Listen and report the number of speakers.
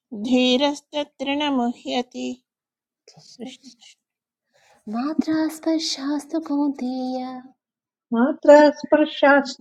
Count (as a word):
three